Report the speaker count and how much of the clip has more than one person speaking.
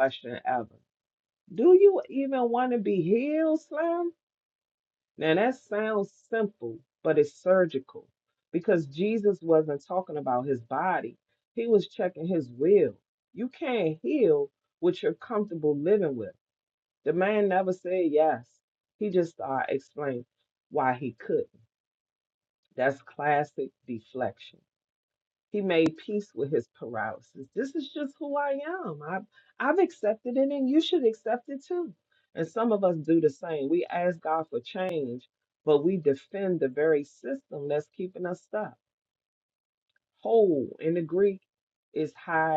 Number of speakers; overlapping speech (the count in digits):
1, no overlap